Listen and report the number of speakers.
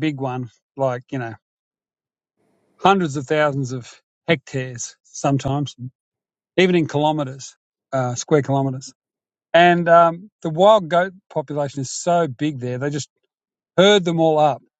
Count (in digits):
1